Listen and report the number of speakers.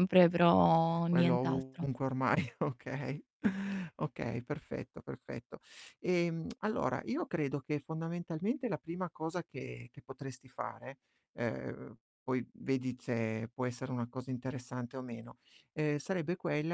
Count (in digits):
2